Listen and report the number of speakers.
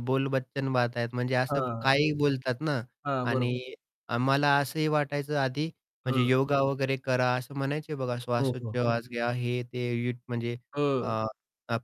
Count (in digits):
2